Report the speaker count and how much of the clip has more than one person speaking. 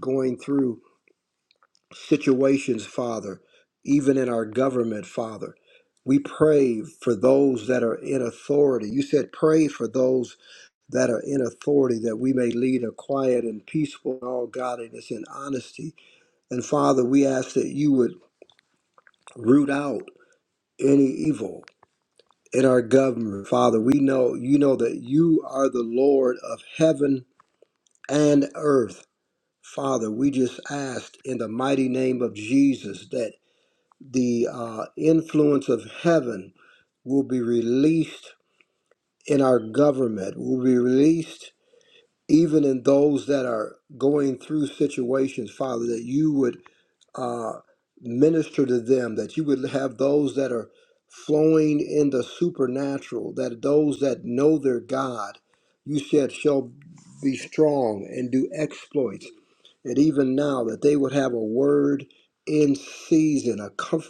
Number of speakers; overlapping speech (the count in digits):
1, no overlap